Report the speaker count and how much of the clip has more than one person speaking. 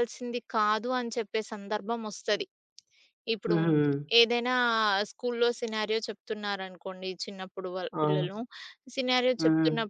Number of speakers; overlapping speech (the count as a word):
two, about 7%